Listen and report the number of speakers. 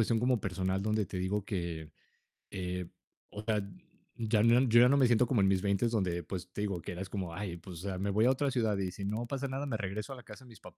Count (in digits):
1